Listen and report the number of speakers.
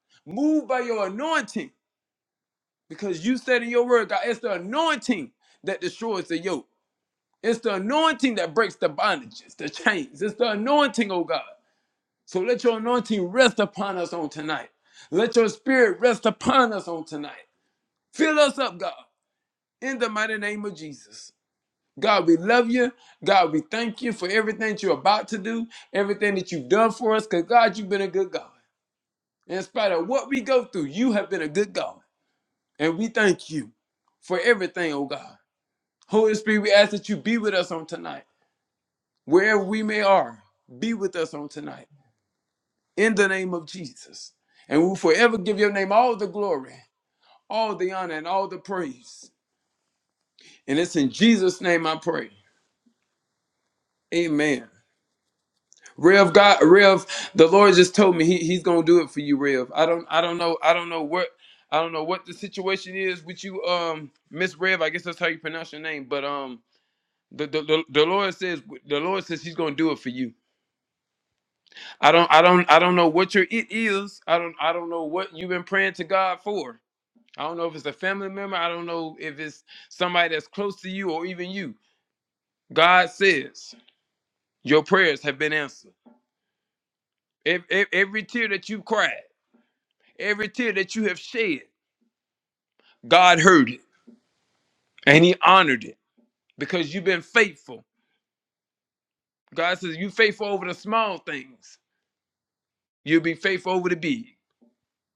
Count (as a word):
one